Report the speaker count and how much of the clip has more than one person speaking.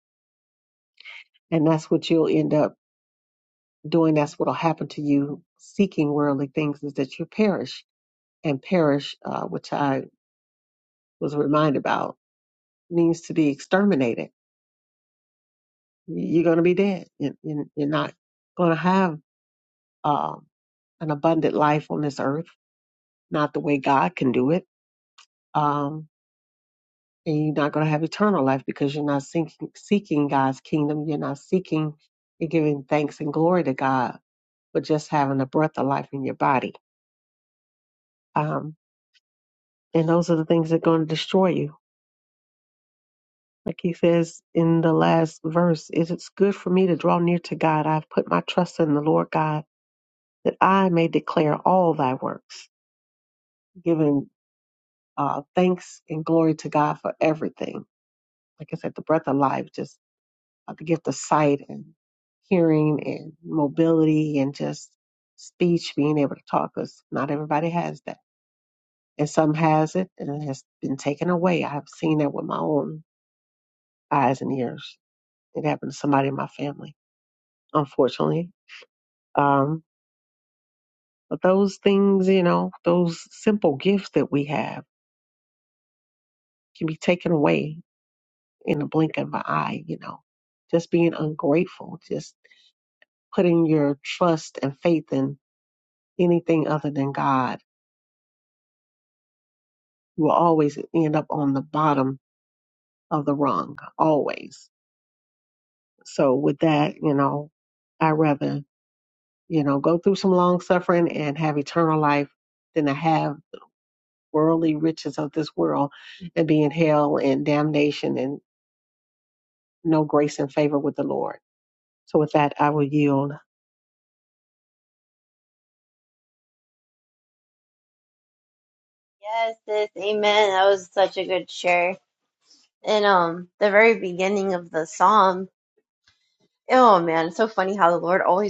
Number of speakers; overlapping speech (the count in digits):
2, no overlap